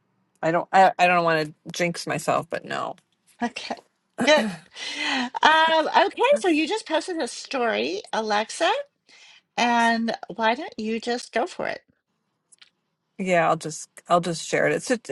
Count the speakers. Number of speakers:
two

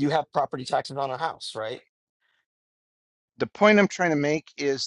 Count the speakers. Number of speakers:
two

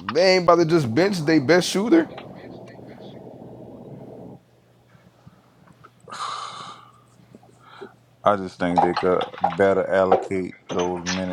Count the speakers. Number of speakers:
two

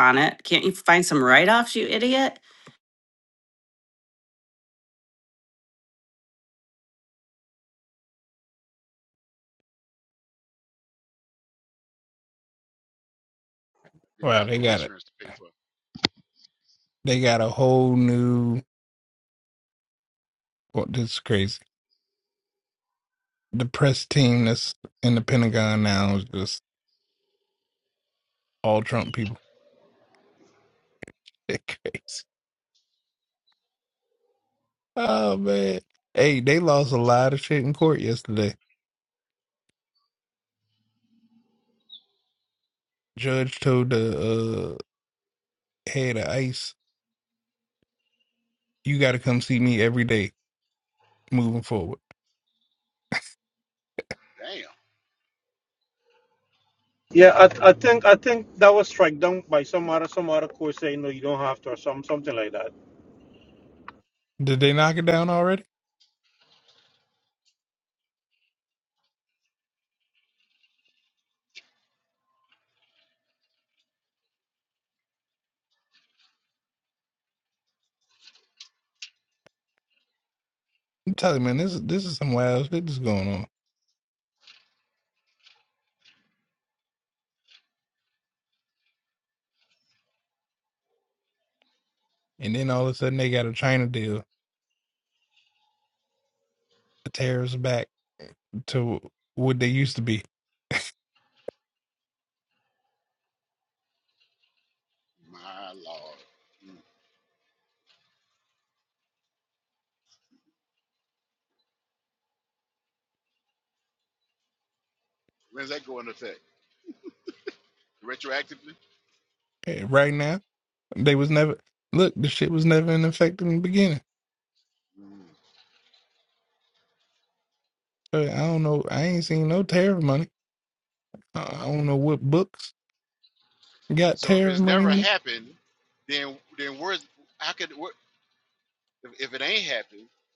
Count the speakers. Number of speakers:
four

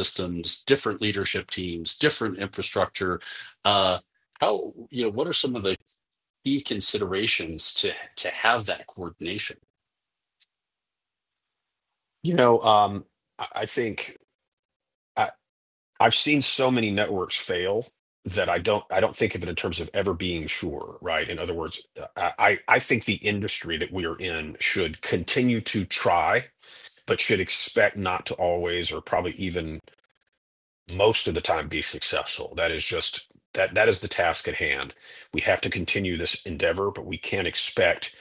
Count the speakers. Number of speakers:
two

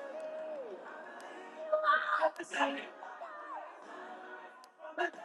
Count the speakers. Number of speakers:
zero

